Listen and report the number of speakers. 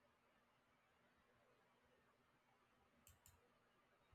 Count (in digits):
0